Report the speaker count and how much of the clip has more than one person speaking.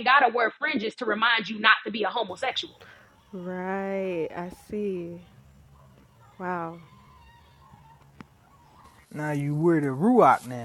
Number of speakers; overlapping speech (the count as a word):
three, no overlap